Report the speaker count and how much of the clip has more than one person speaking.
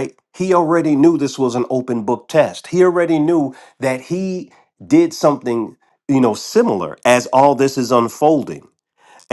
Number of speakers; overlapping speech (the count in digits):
1, no overlap